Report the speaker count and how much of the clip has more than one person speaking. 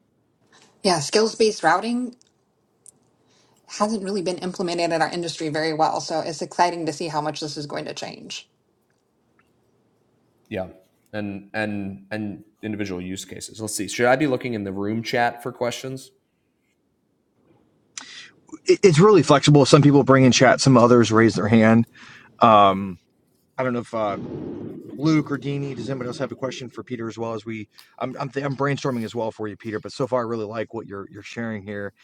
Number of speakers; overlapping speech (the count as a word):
three, no overlap